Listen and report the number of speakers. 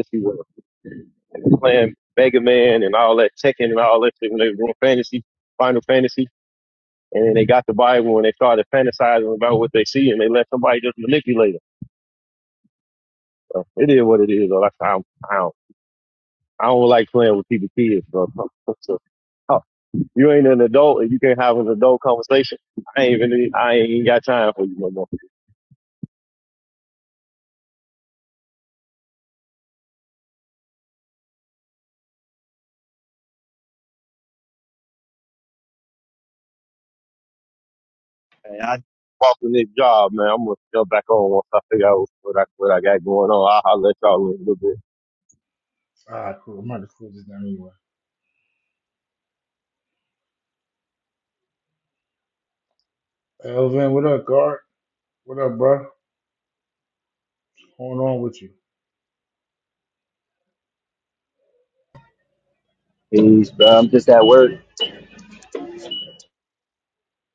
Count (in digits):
3